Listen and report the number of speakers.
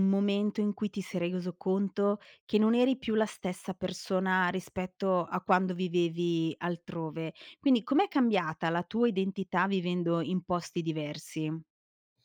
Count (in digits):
1